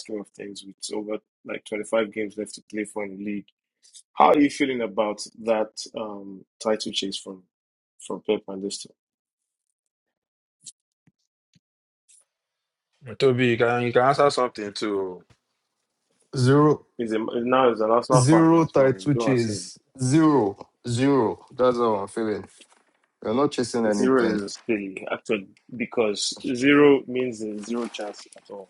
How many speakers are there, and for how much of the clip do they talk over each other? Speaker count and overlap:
three, about 7%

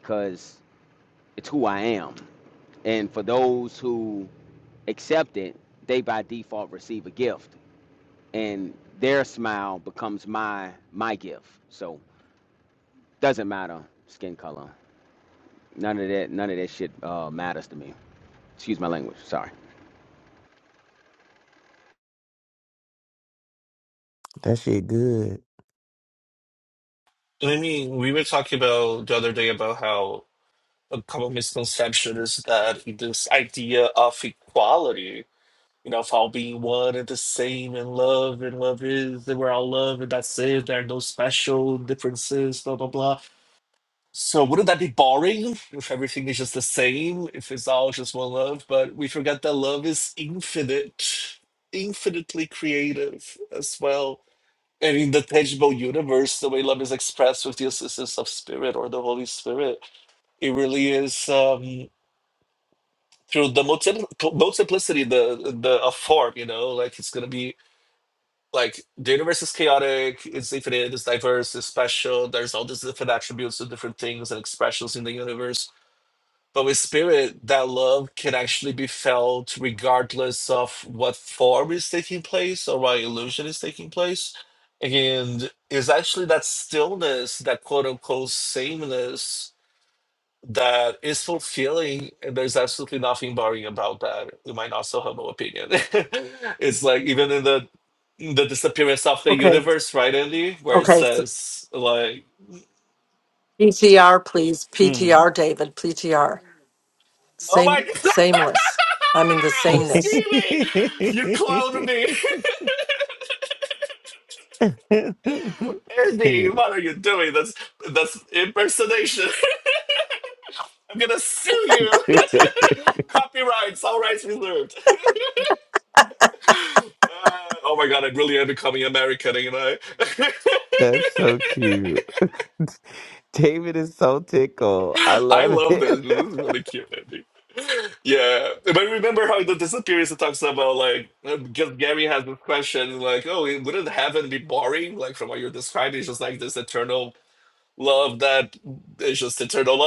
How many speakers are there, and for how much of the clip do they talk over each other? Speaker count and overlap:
four, about 2%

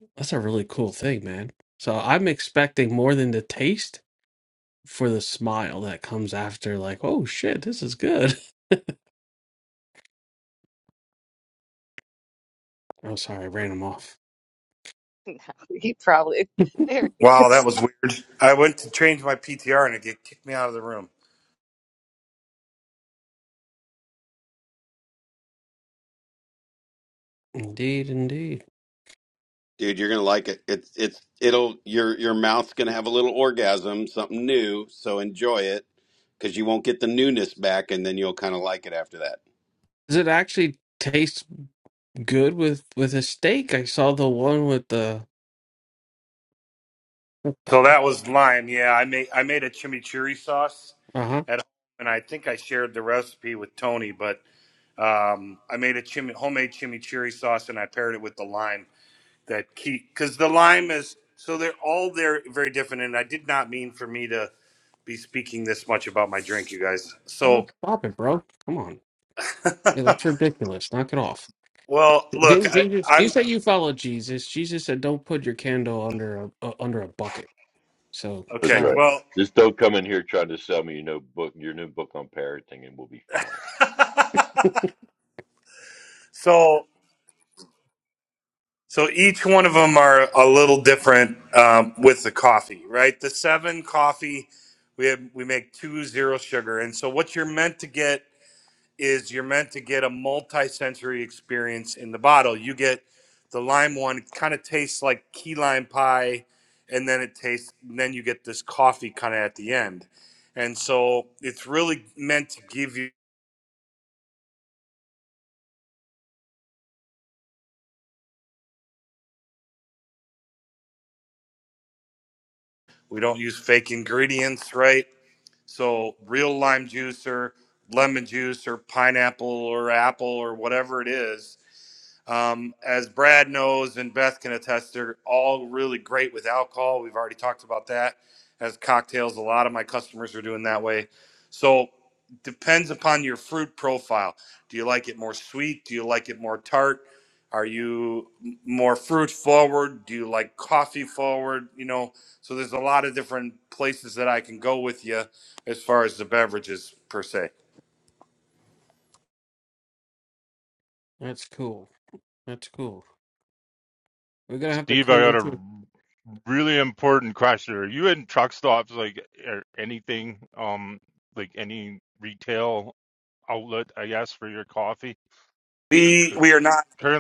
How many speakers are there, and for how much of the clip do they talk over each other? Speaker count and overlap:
six, about 2%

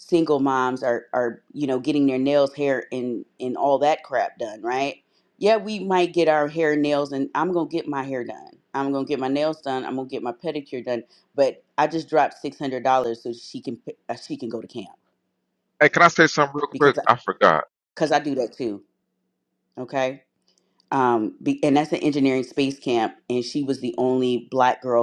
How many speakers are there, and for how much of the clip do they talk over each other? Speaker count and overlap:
two, about 1%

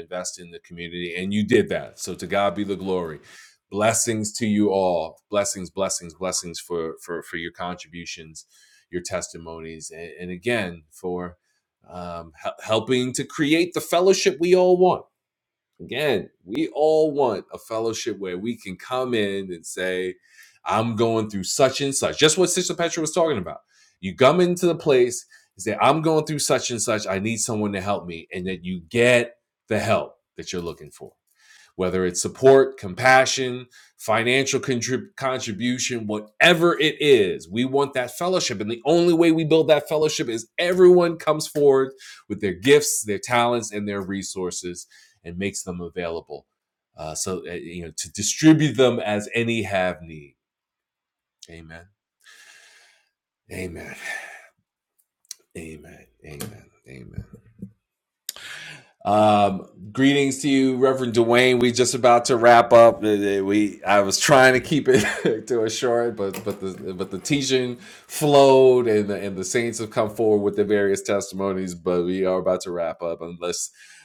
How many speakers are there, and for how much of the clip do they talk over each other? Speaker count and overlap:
one, no overlap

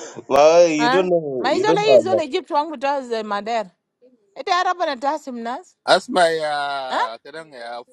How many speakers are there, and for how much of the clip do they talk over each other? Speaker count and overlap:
three, about 14%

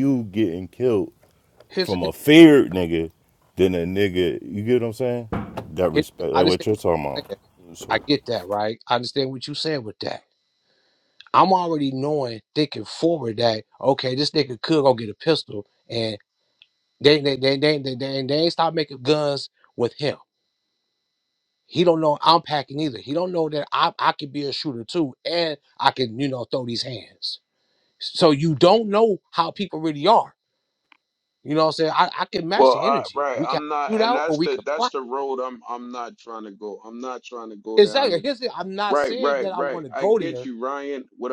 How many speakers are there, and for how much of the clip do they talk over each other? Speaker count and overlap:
three, about 14%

